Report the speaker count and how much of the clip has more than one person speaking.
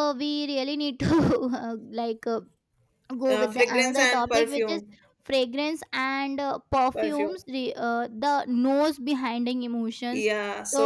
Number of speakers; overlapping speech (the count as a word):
two, about 20%